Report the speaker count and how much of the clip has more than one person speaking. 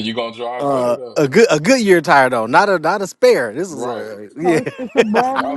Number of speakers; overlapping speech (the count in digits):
3, about 25%